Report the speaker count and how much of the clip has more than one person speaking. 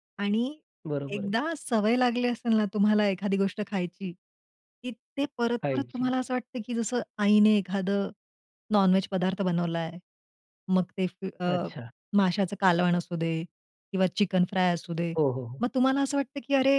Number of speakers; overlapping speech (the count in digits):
2, about 5%